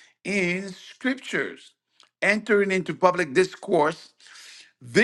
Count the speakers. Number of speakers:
one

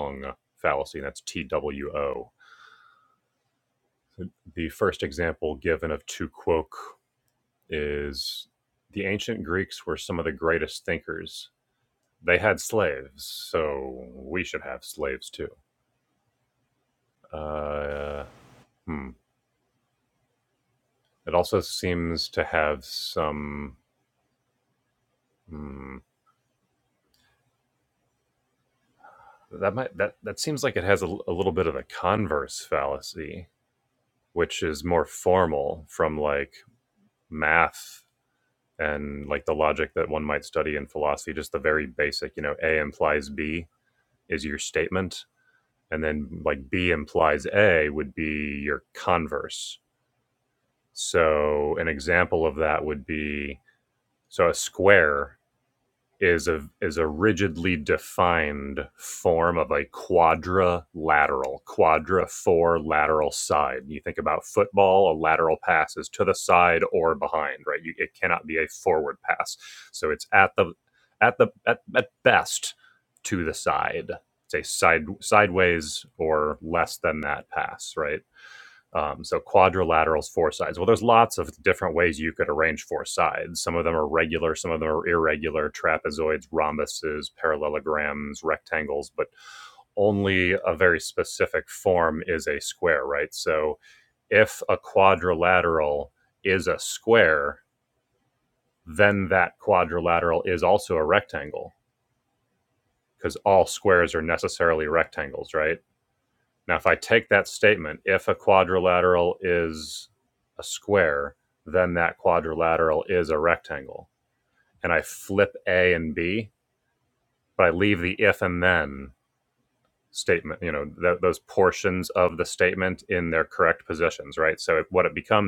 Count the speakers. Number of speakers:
one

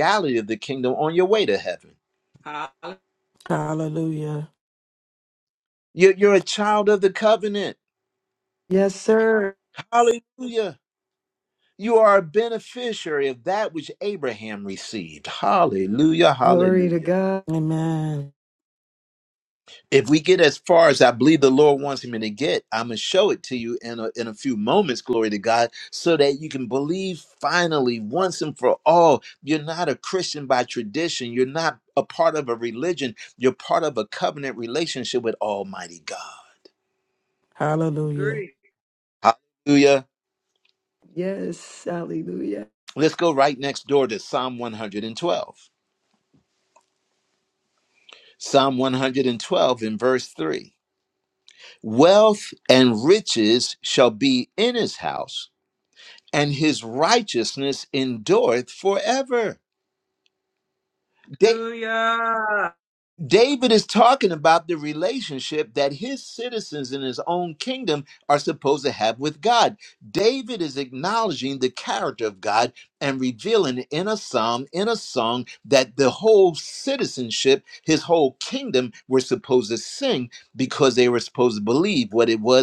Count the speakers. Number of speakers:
four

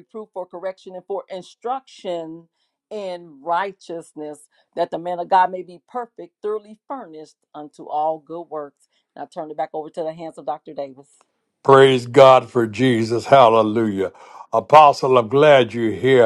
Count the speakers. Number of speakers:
two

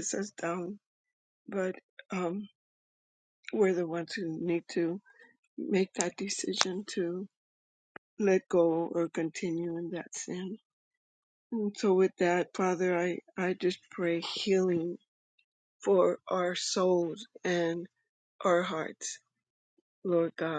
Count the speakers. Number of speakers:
one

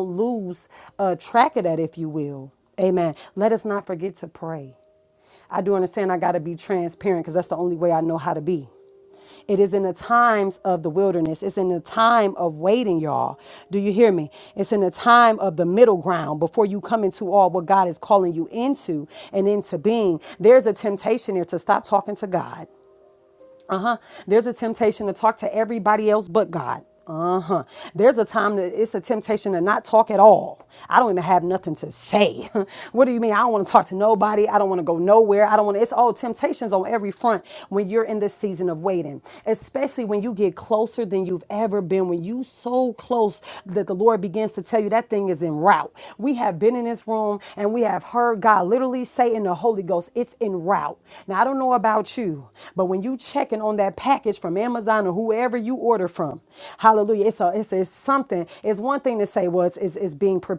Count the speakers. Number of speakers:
one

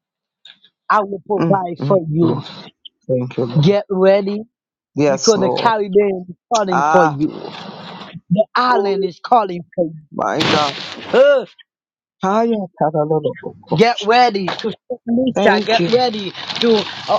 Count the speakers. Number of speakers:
two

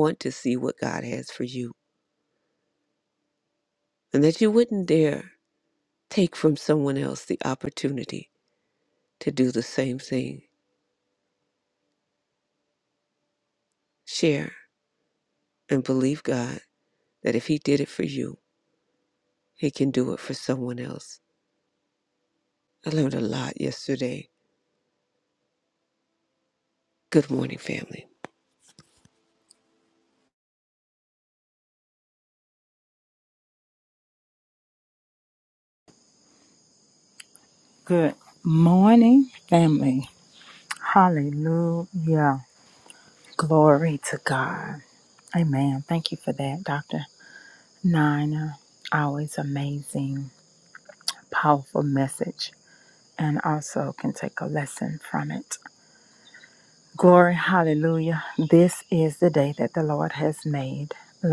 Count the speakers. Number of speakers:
two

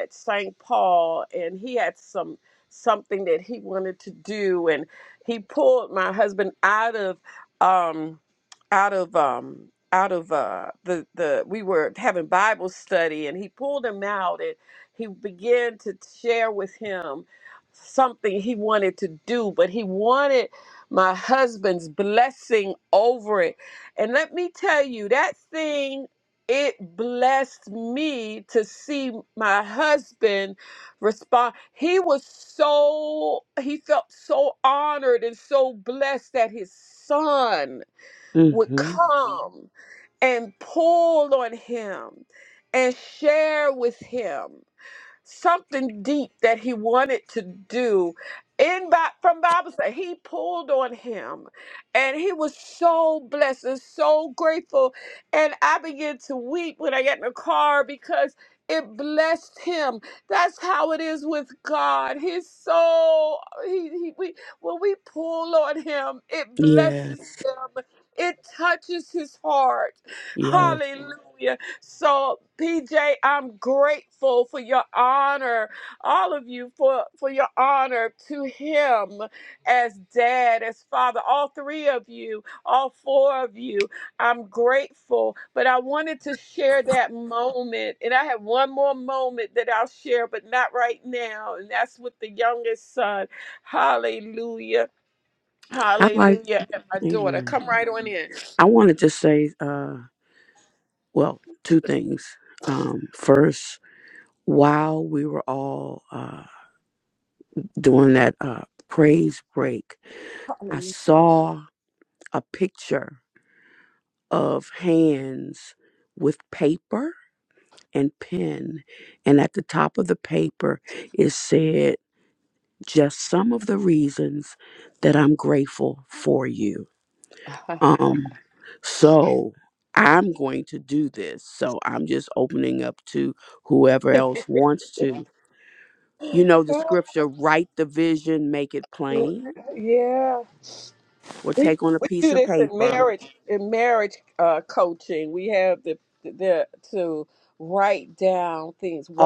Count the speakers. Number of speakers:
two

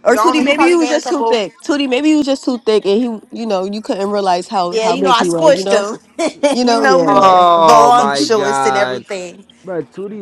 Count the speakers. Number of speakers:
three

